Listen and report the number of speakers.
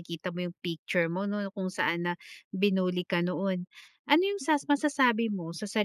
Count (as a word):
one